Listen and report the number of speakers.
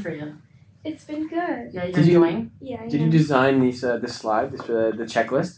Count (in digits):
3